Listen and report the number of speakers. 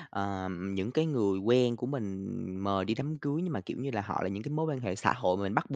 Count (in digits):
1